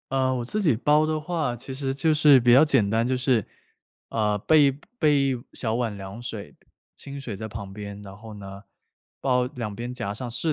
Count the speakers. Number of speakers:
one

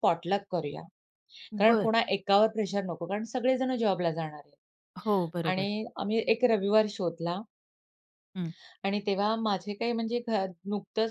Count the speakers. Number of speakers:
two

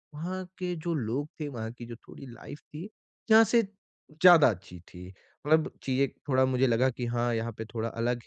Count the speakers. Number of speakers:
one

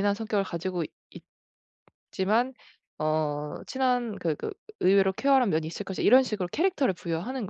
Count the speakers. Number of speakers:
one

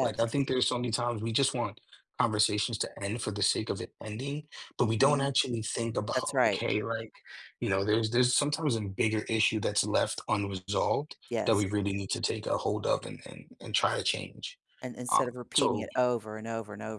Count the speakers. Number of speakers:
two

